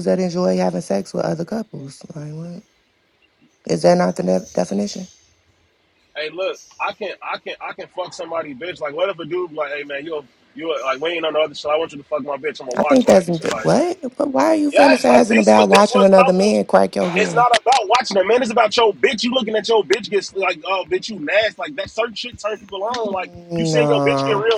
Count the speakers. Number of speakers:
2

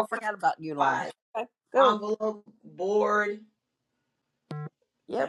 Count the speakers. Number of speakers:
2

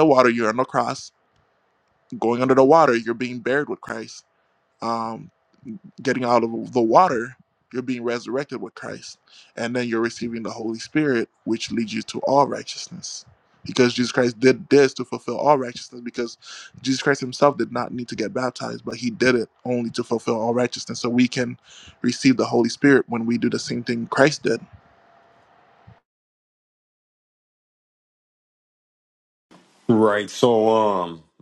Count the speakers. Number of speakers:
2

